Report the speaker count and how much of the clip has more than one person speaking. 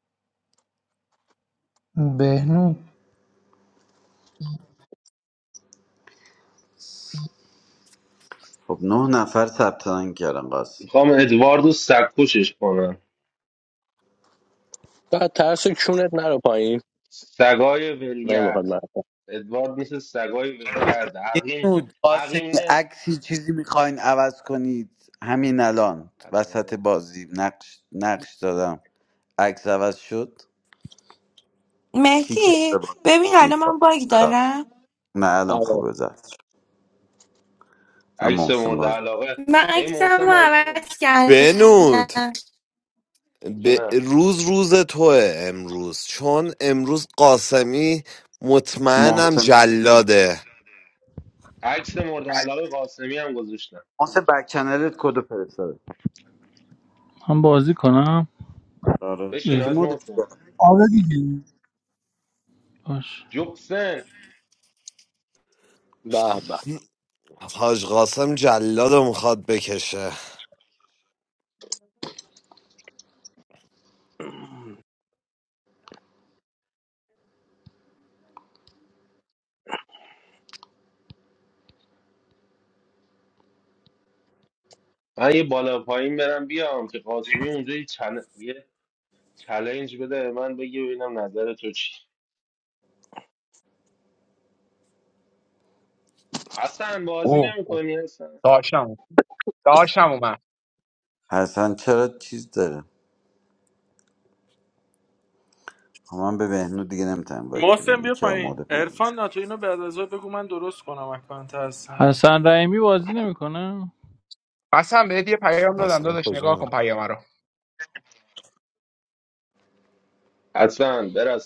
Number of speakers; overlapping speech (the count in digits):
9, about 8%